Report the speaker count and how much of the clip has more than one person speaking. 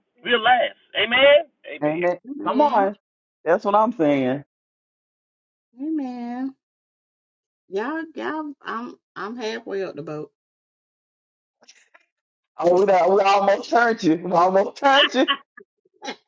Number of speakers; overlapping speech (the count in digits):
3, about 6%